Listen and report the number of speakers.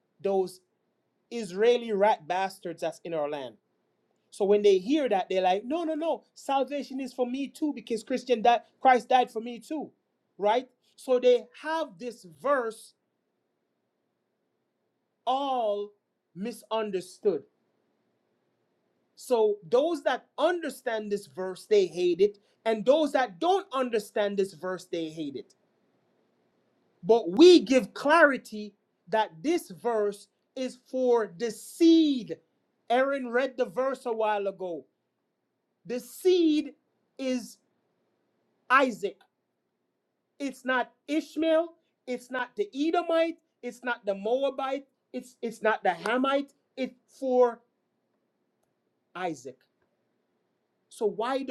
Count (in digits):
1